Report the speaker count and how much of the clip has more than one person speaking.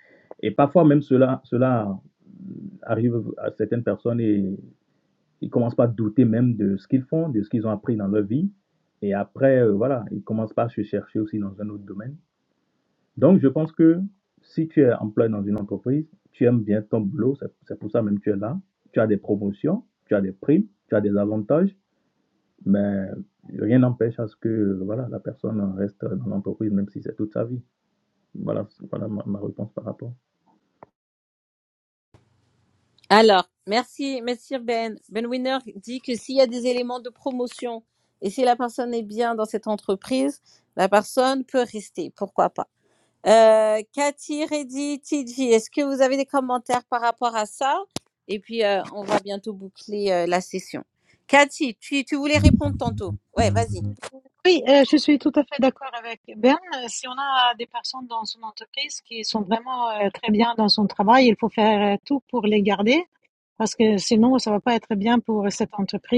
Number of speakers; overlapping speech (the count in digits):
3, no overlap